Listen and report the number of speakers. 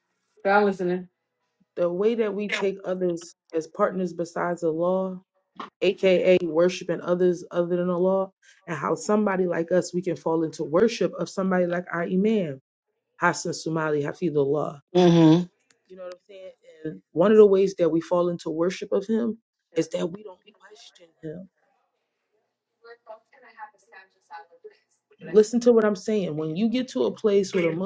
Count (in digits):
2